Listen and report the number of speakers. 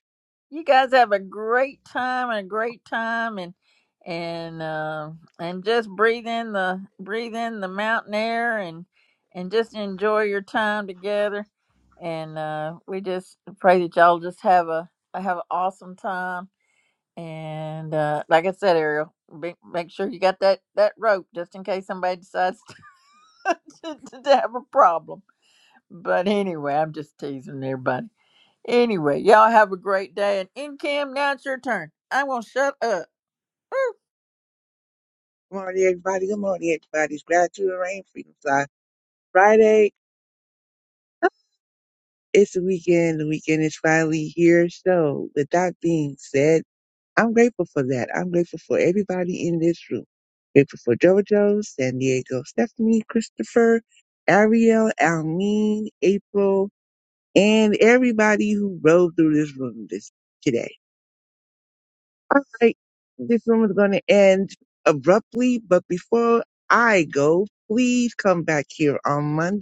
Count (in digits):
2